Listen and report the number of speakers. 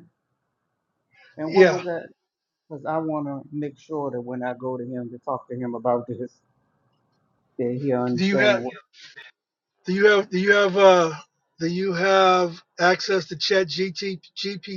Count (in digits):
2